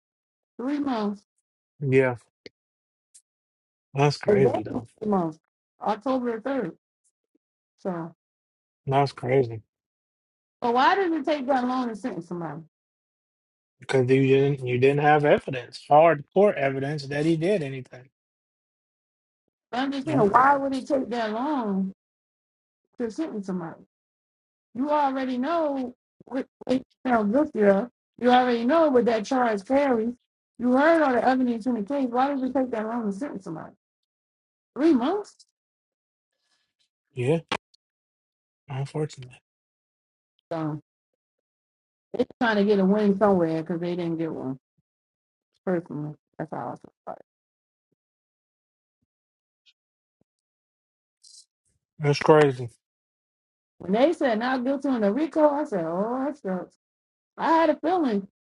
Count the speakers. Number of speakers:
two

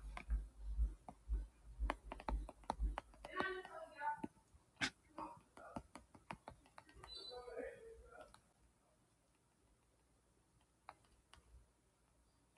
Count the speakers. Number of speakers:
zero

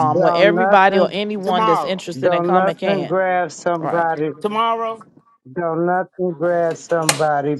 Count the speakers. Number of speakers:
three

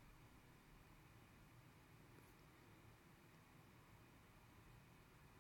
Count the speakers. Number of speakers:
zero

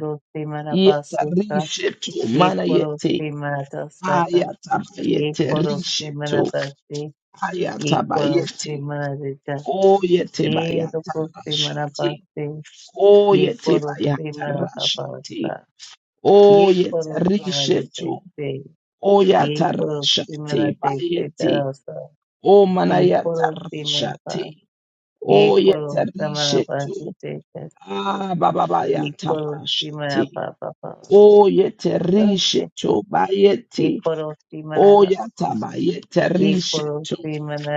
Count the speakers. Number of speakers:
two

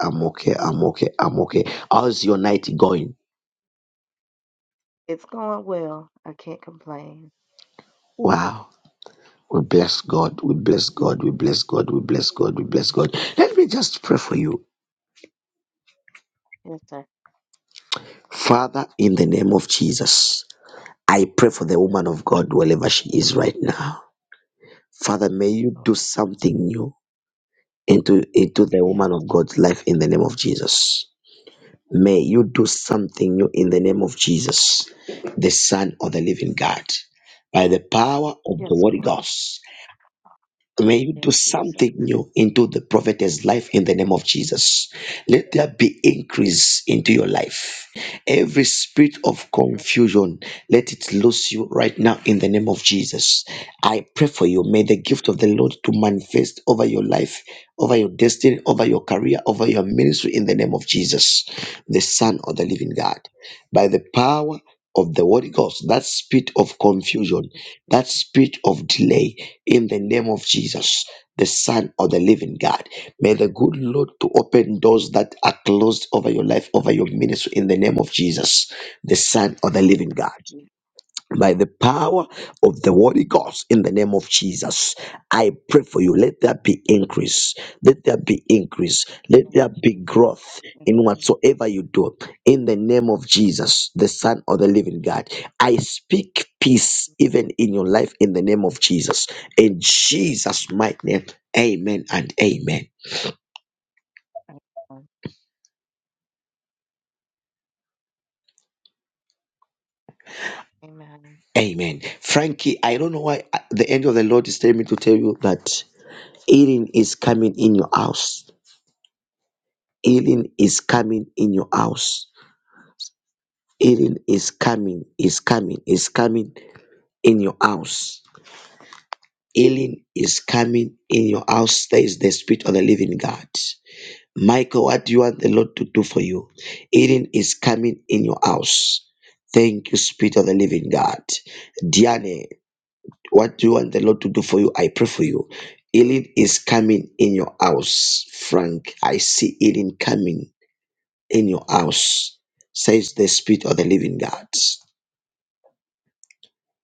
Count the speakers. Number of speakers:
two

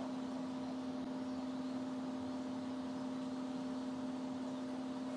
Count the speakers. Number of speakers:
zero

